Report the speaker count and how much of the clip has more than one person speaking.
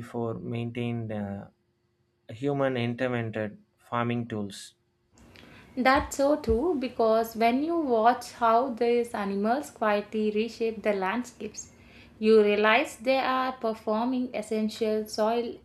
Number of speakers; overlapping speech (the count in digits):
2, no overlap